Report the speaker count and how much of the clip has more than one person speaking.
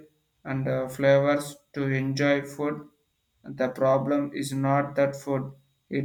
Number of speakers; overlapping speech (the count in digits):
1, no overlap